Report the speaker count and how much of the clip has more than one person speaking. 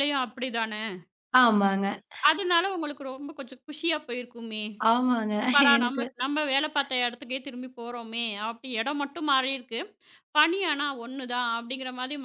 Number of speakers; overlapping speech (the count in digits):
2, about 3%